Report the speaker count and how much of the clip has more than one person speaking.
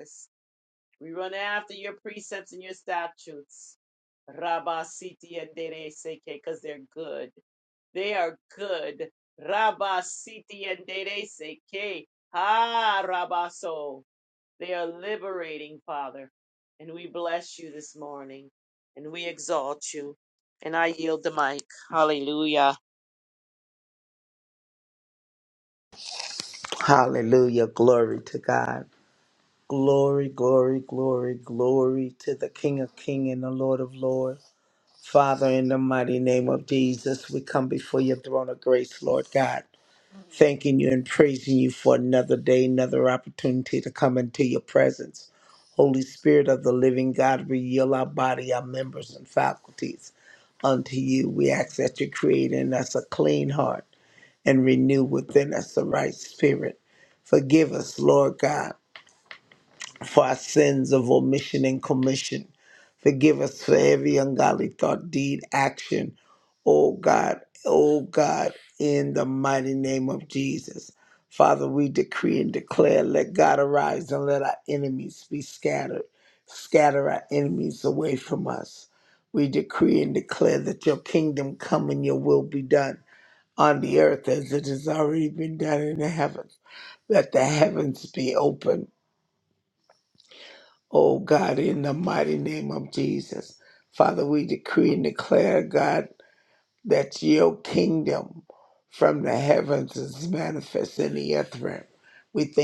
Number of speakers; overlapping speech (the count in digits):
2, no overlap